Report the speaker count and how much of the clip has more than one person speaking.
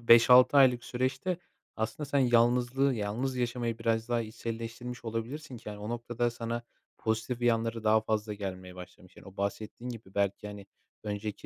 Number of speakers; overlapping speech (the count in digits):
1, no overlap